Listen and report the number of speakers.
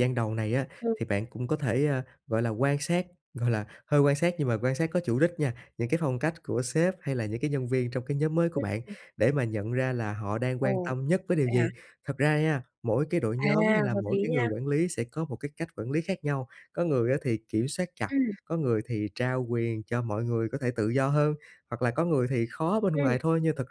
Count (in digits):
2